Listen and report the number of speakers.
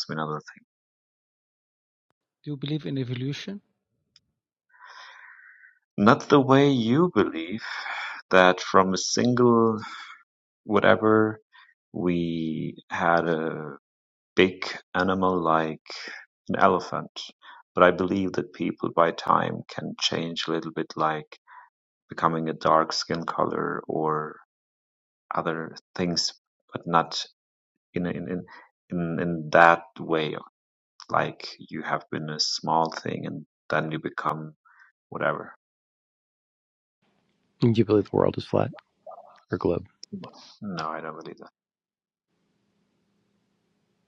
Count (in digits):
3